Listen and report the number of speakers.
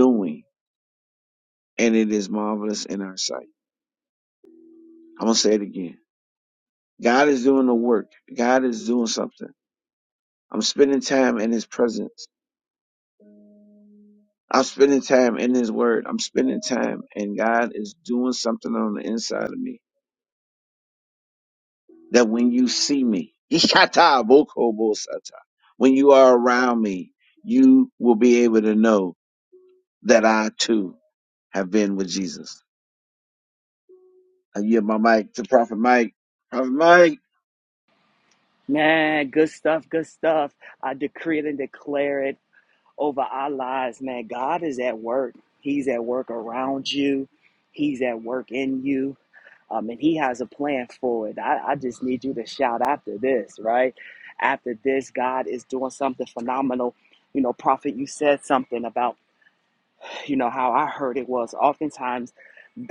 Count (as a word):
two